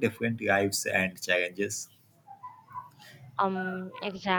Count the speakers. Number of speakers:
two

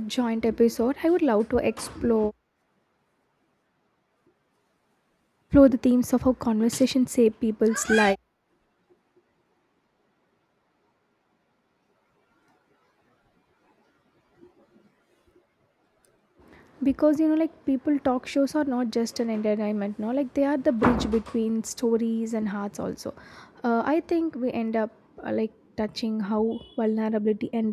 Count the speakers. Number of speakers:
one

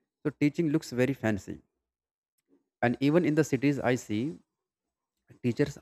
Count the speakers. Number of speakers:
one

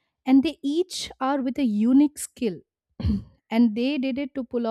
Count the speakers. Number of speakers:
one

